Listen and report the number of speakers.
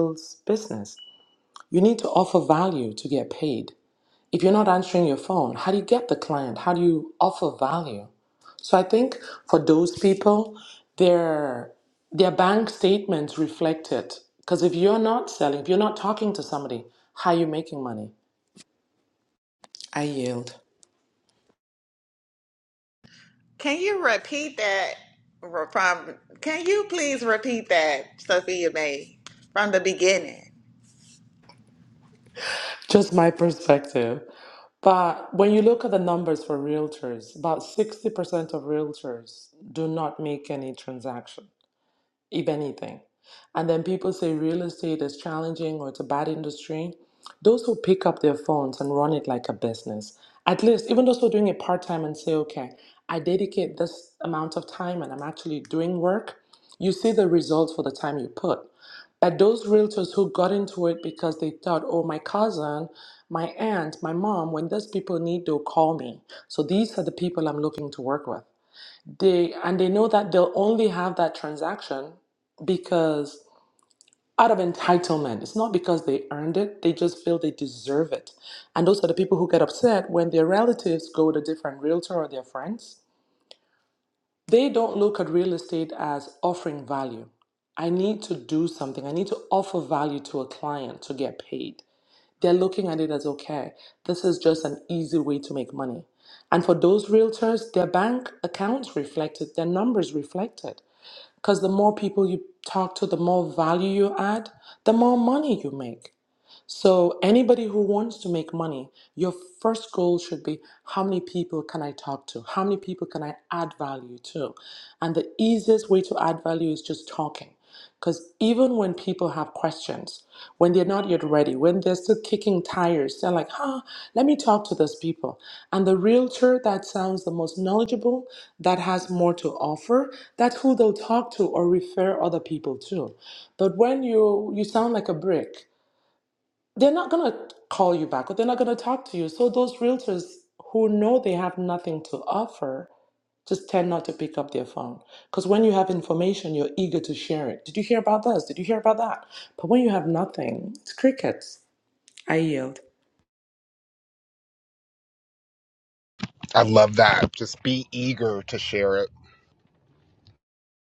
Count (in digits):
3